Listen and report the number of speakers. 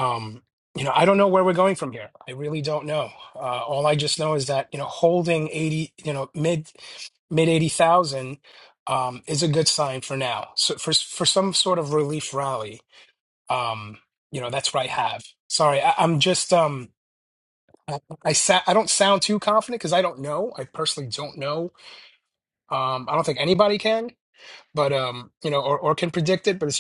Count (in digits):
1